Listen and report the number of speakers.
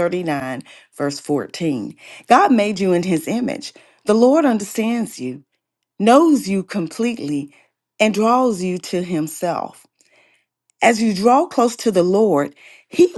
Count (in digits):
1